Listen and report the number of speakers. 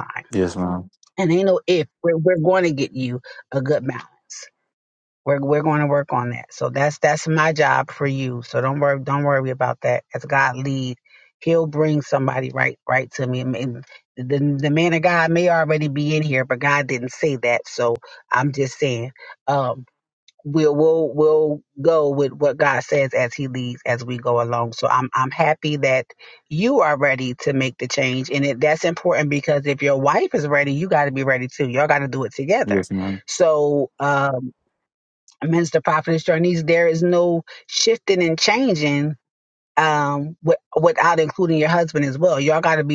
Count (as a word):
two